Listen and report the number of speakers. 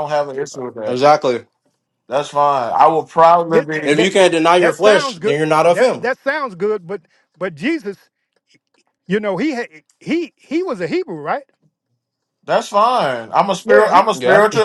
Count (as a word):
three